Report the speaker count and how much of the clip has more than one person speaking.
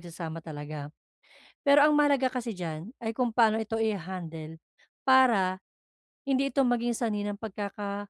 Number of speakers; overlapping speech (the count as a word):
one, no overlap